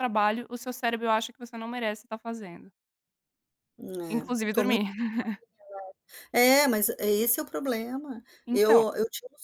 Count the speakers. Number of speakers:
two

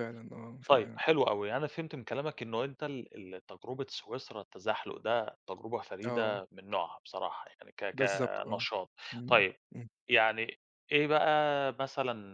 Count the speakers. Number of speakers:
two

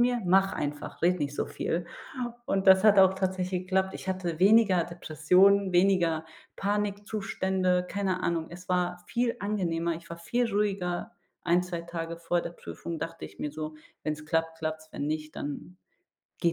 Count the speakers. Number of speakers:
one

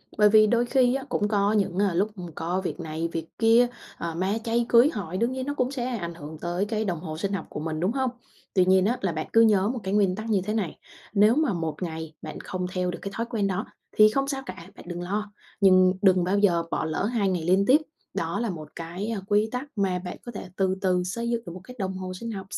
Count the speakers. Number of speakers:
one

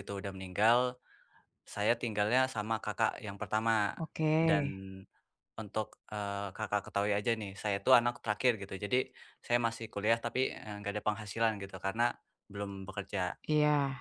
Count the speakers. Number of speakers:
two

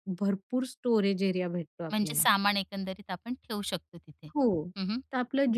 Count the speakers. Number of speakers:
two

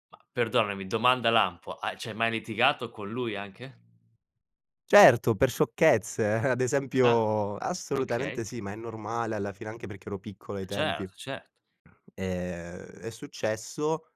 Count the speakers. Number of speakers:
two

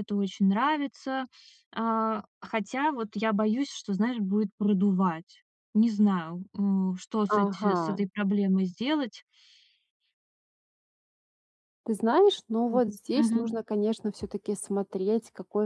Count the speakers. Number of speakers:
two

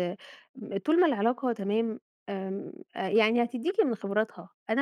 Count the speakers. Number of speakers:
one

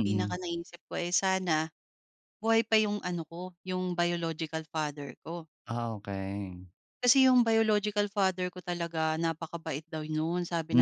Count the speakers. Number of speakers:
two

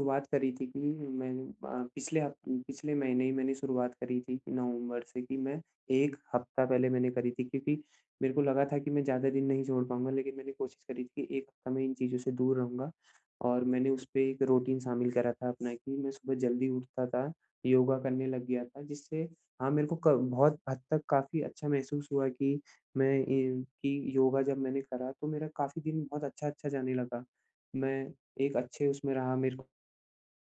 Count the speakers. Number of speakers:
one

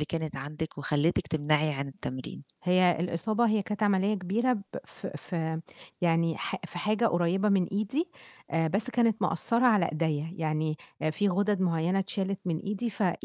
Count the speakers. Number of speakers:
two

